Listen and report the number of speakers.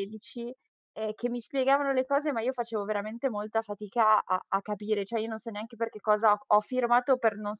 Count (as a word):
one